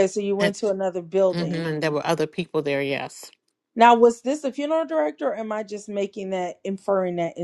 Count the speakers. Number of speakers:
two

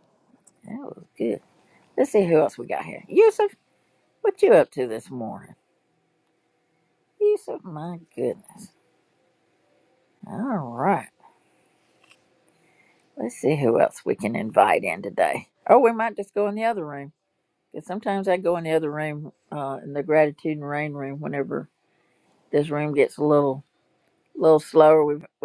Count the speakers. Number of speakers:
one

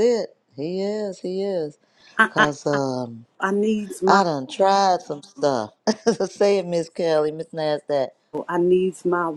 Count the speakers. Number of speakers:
two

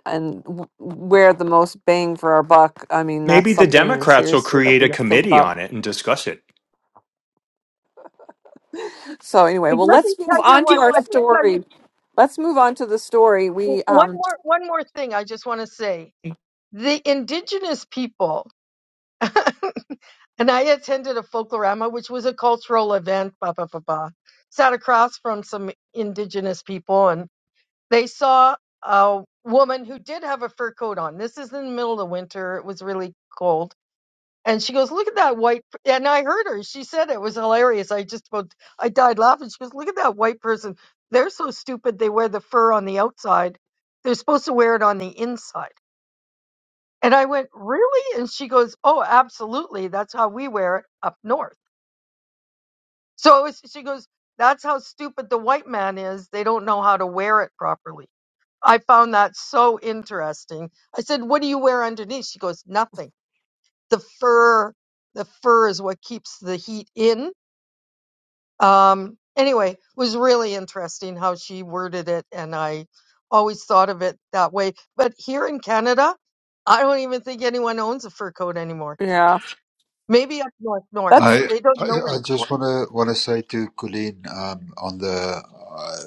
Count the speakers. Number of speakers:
four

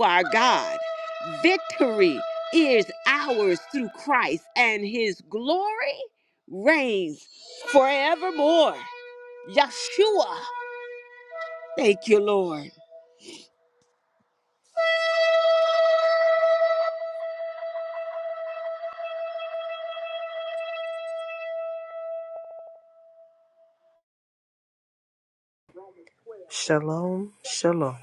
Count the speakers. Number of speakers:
two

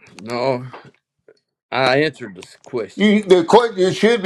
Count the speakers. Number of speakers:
two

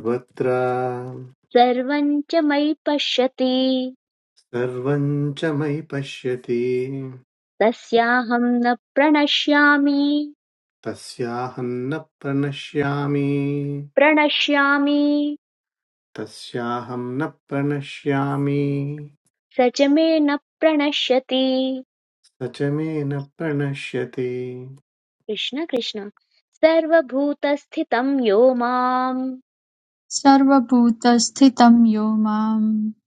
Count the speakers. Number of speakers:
three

